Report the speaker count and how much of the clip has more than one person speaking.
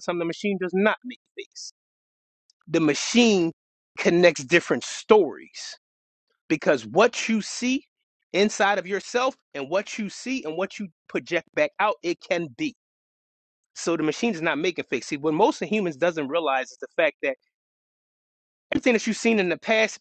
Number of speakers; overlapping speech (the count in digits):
1, no overlap